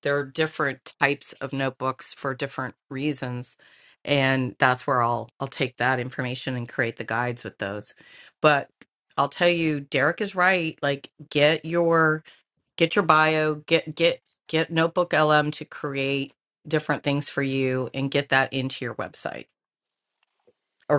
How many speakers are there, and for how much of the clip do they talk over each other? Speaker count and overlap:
one, no overlap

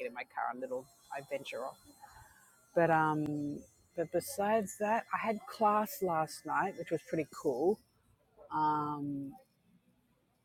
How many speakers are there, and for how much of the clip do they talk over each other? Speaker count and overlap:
one, no overlap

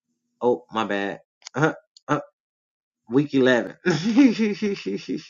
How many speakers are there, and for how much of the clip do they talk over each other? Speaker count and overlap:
one, no overlap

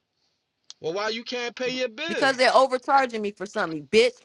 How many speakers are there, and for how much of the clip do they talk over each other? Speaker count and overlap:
two, about 9%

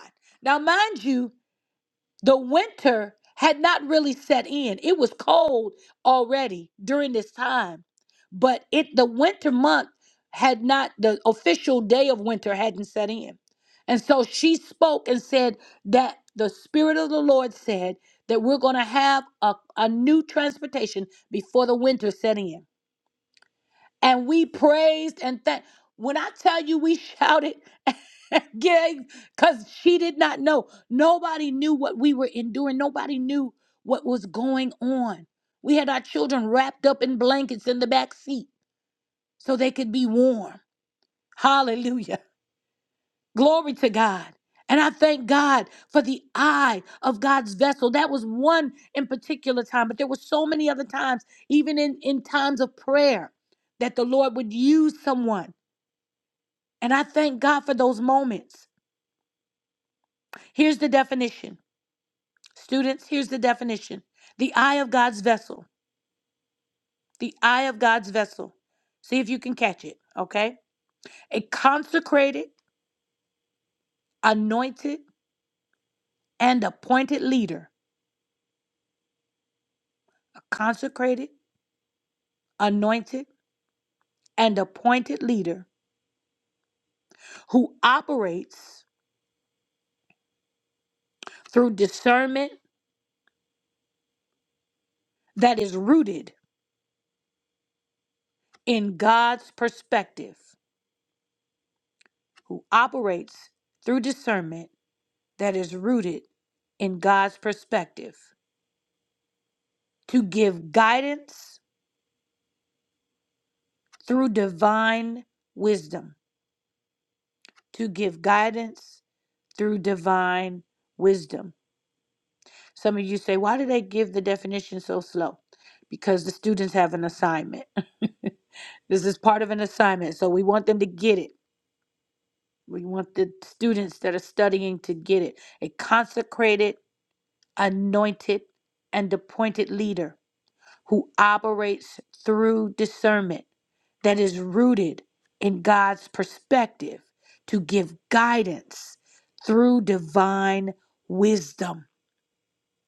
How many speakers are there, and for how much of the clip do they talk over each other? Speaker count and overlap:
one, no overlap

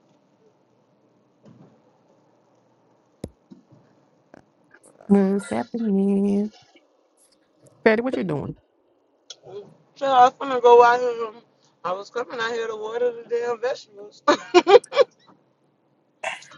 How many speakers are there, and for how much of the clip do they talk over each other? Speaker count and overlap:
two, no overlap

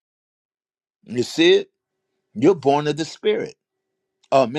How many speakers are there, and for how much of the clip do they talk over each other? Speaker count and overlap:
one, no overlap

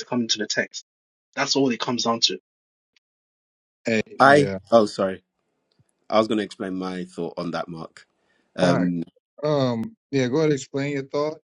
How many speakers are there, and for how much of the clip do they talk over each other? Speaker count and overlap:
three, about 6%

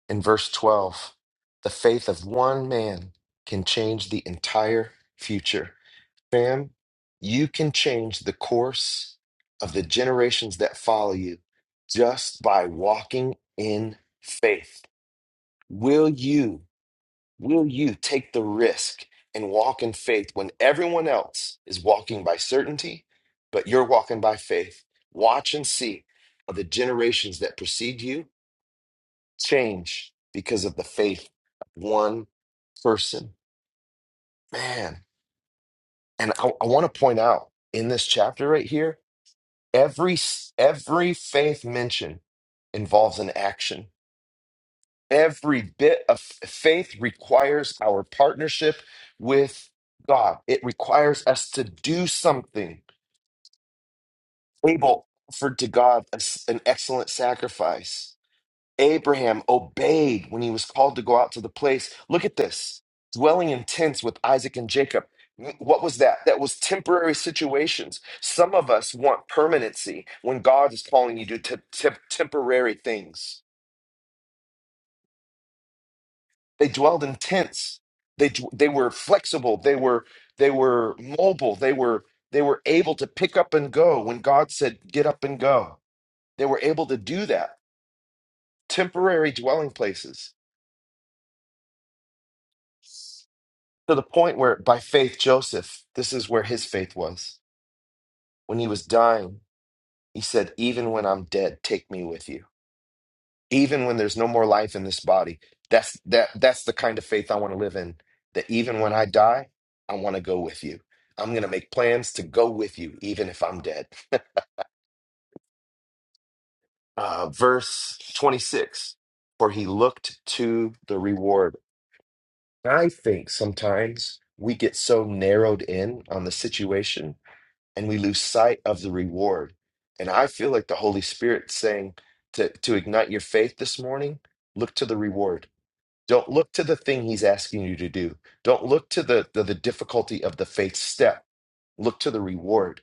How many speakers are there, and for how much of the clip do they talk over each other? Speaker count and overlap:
one, no overlap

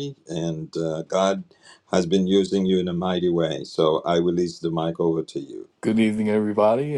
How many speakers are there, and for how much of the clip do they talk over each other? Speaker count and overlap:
two, no overlap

